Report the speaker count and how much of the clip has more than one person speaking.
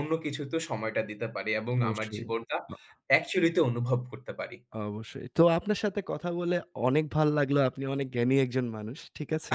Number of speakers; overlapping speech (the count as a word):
two, about 6%